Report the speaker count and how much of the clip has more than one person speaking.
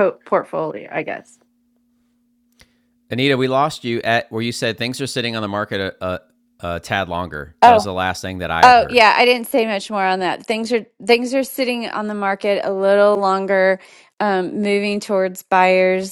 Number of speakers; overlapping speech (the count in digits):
2, about 4%